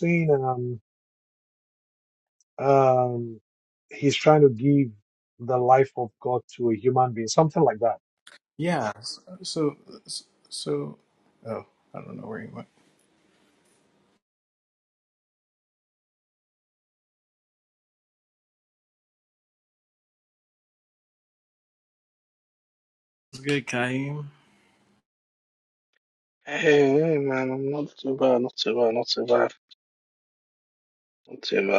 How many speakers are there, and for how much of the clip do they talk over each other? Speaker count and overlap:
three, no overlap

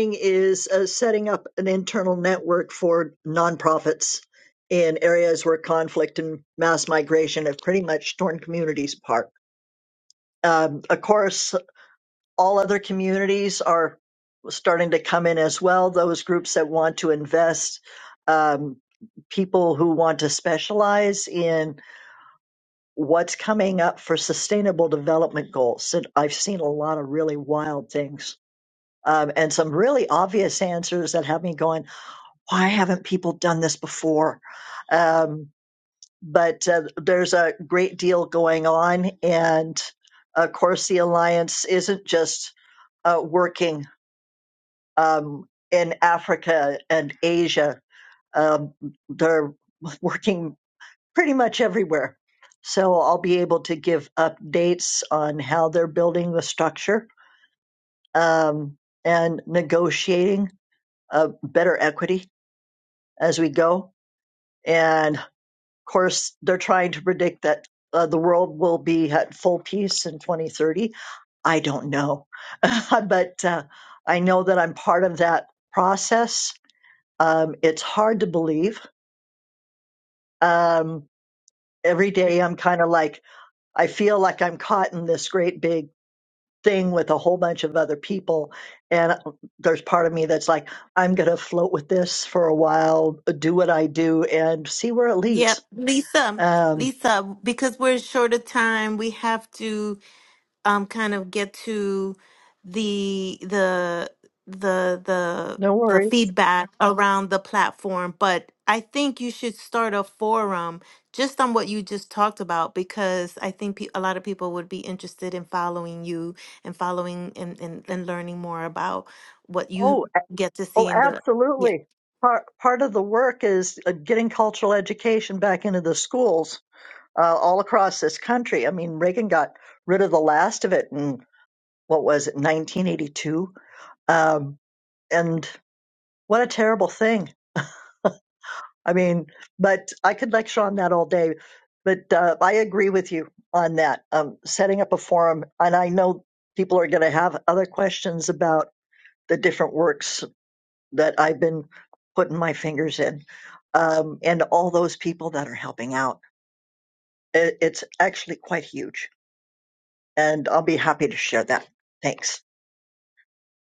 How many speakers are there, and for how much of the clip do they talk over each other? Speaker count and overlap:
two, about 1%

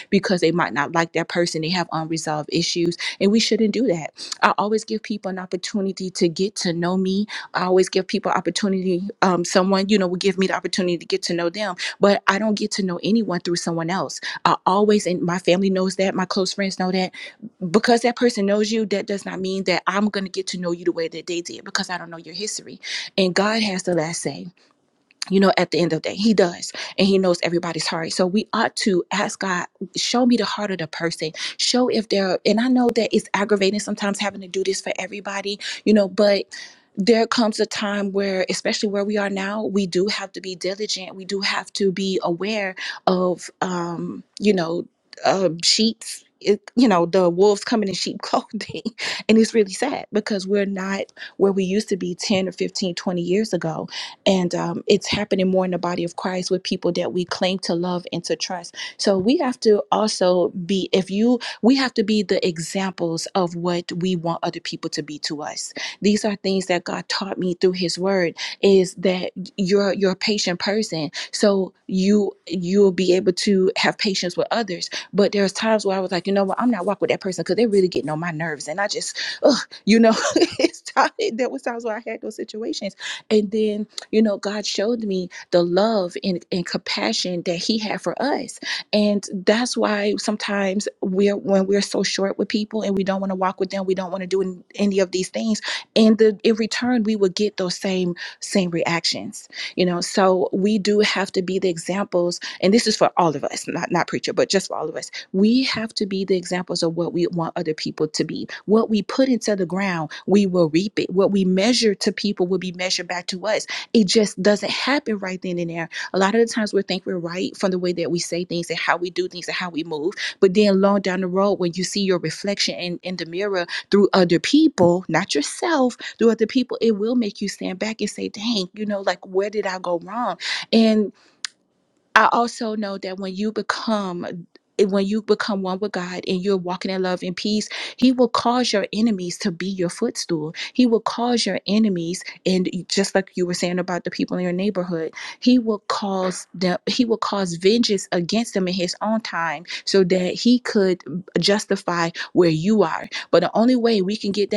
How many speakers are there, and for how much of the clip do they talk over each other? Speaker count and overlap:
one, no overlap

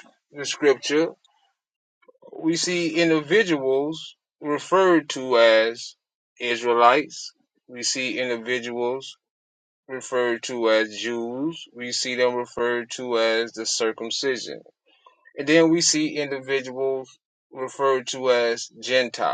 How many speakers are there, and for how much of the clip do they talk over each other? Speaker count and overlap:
one, no overlap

